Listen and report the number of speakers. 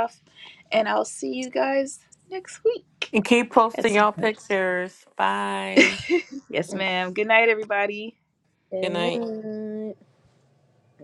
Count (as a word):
three